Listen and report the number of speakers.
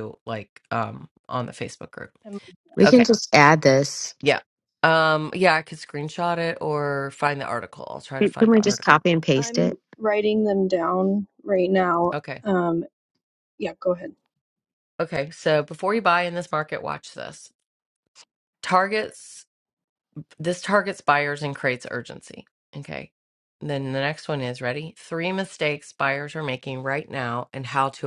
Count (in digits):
3